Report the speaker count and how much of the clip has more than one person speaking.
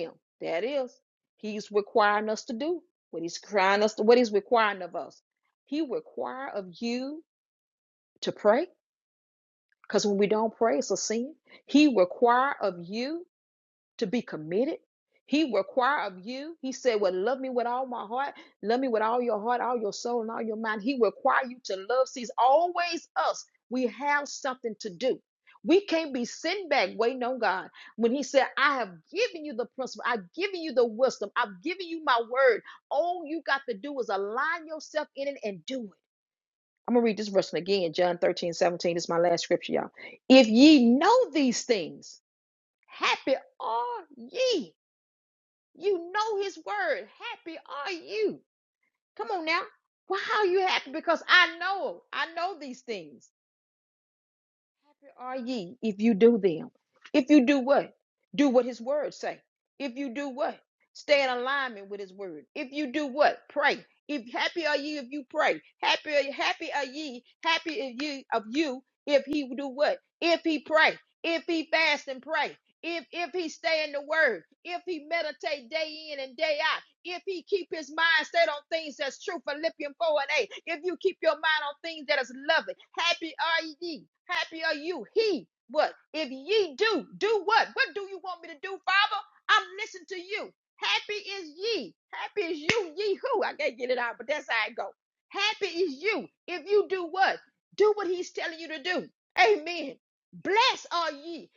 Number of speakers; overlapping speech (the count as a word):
one, no overlap